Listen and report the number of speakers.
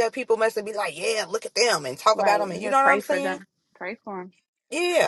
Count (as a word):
two